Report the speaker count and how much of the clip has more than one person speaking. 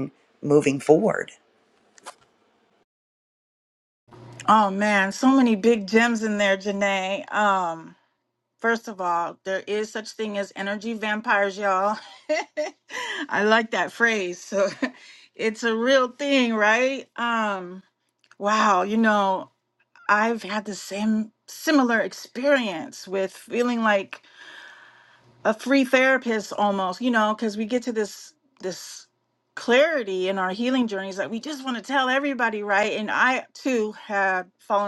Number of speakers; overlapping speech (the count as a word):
two, no overlap